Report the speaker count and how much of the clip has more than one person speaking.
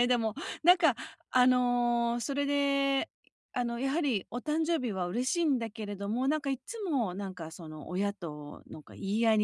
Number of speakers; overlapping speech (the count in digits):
1, no overlap